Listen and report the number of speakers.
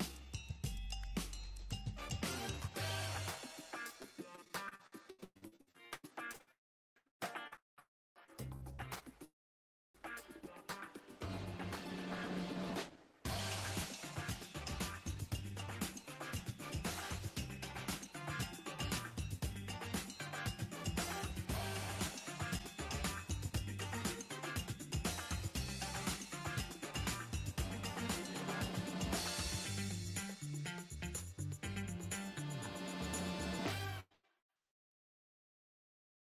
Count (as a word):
zero